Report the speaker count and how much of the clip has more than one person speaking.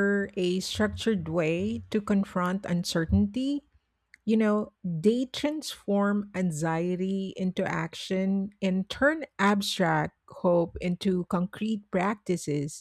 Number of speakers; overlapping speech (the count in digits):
1, no overlap